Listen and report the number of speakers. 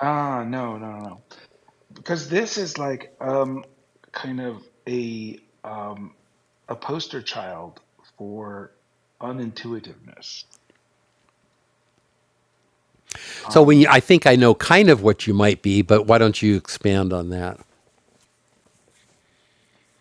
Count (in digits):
2